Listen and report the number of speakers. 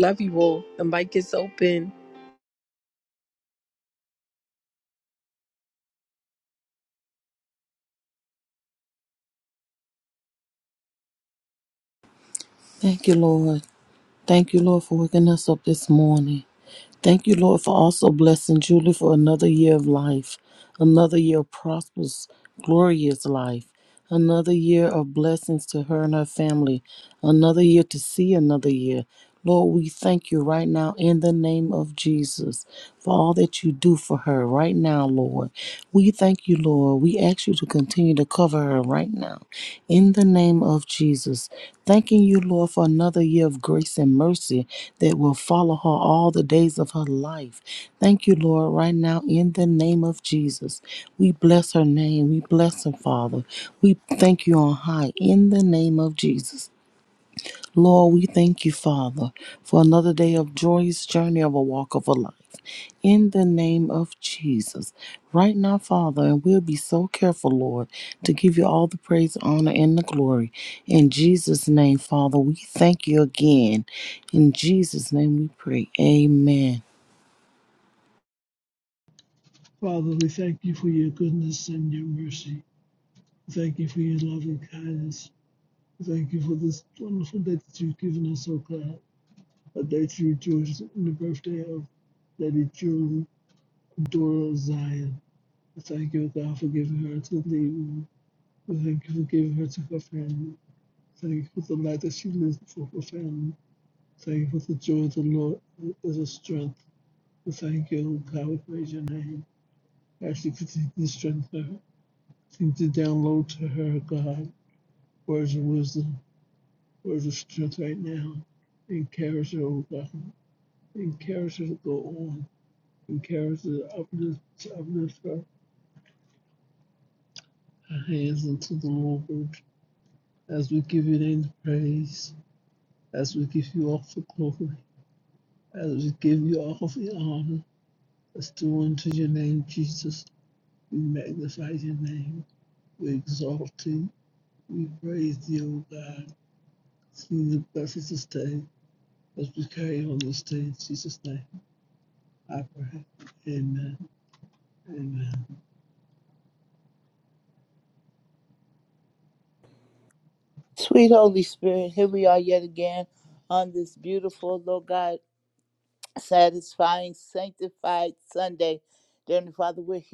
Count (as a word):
four